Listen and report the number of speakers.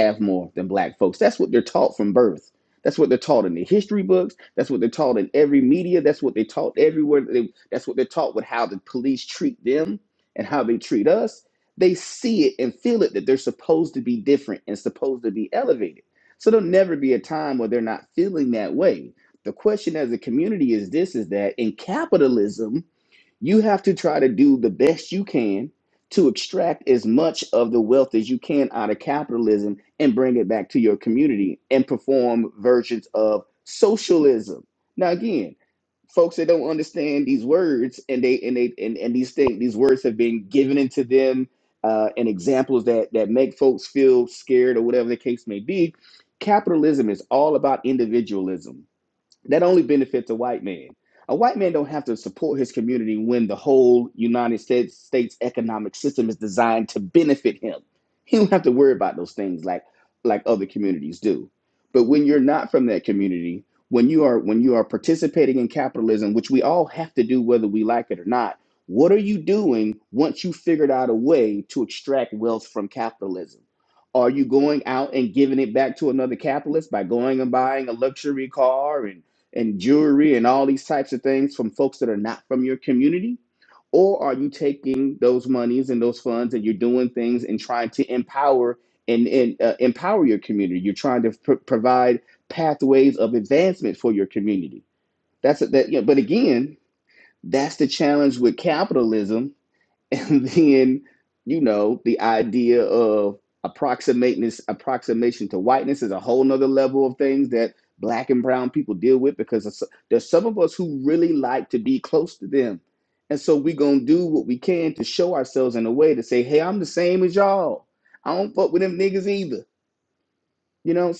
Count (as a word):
one